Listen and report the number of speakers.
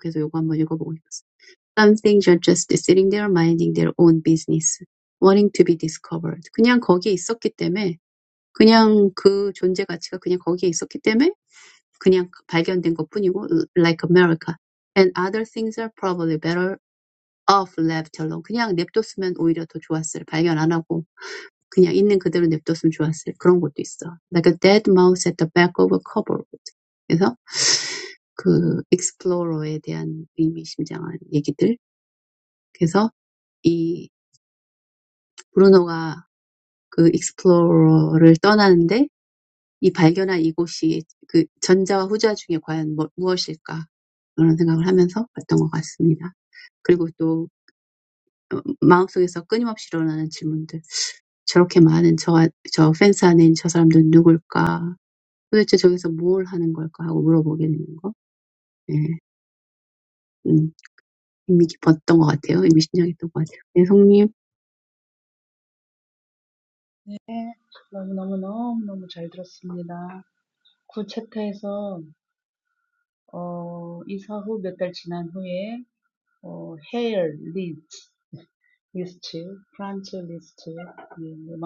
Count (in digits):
2